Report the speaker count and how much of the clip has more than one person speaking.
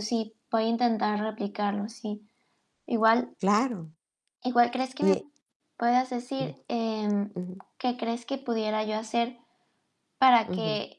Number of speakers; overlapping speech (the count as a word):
two, about 5%